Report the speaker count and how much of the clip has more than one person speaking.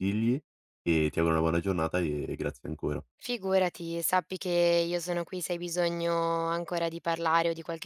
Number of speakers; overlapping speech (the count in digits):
2, no overlap